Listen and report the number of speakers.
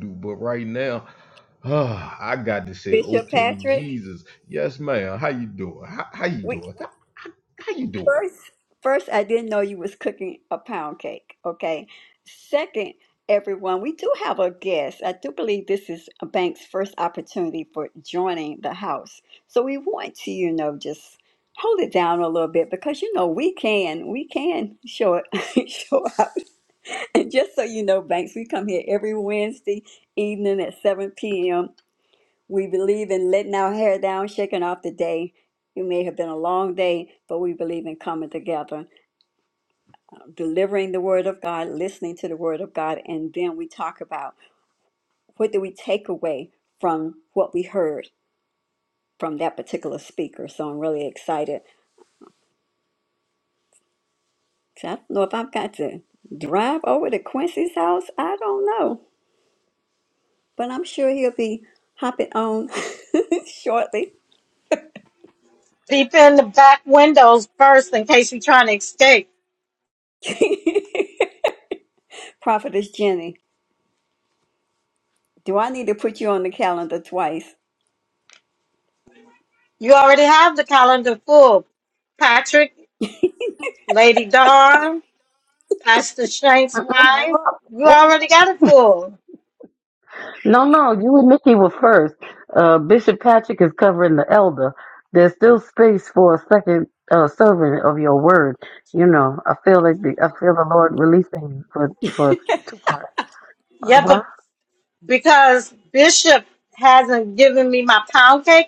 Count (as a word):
four